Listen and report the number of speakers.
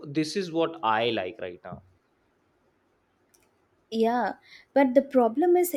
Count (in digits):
2